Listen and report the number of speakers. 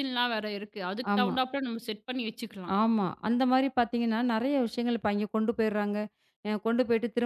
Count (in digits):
2